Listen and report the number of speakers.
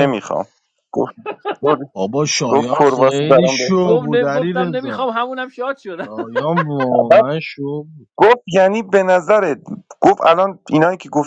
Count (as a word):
three